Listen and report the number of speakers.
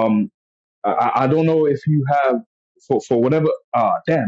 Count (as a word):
one